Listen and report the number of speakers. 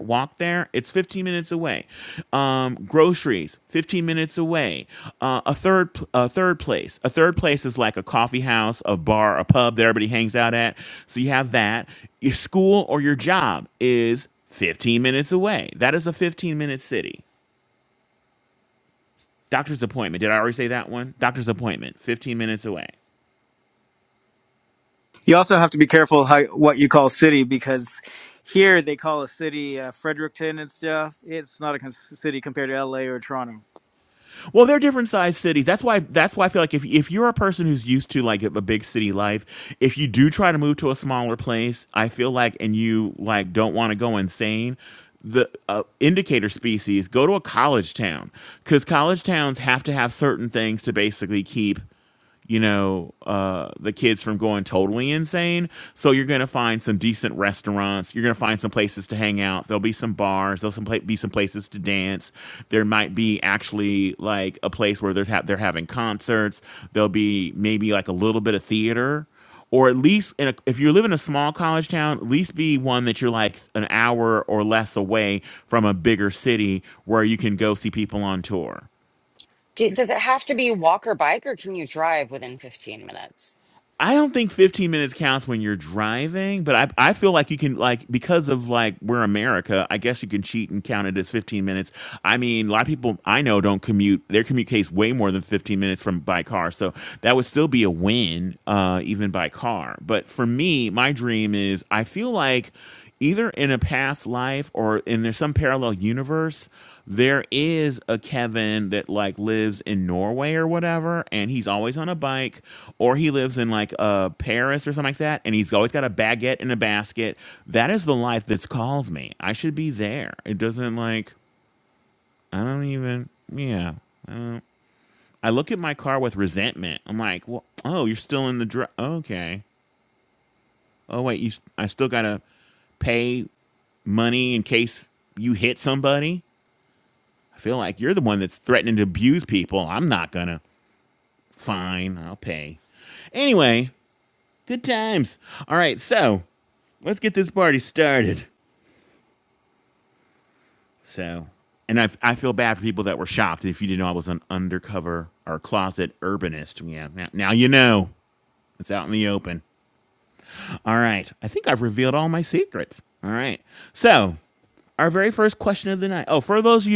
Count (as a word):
three